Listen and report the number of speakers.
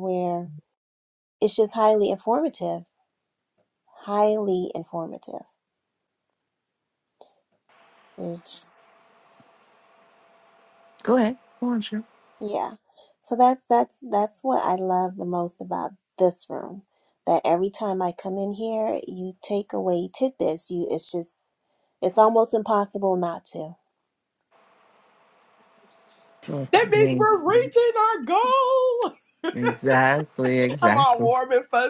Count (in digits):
3